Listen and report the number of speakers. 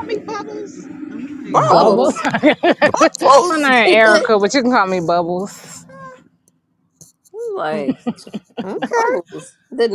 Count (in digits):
4